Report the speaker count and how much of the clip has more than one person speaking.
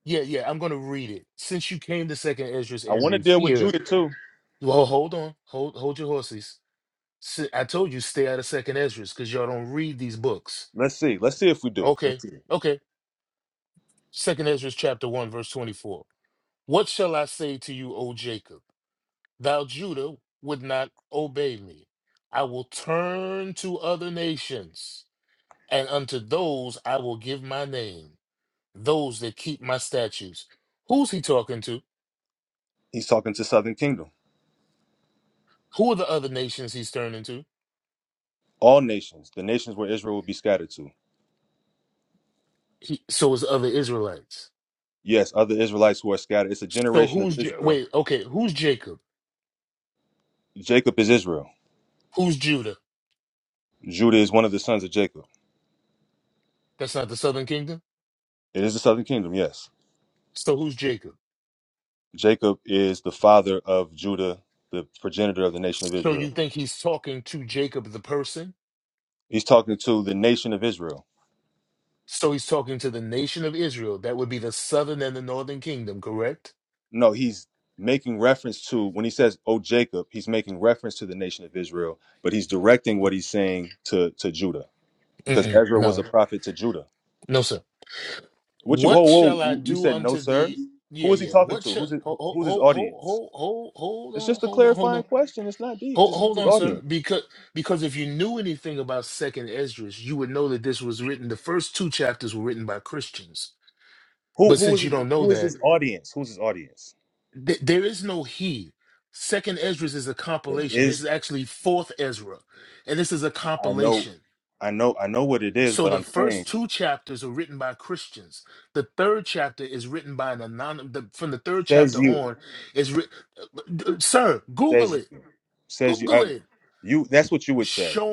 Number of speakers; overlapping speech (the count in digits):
2, about 10%